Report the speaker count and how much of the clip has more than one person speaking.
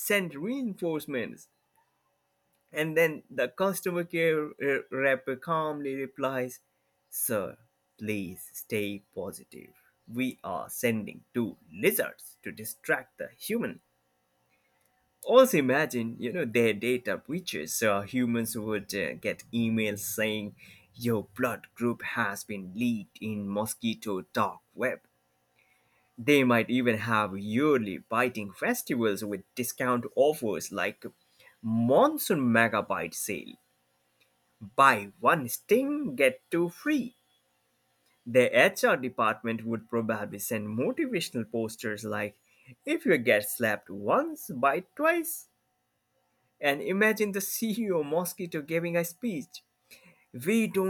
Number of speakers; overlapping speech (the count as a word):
one, no overlap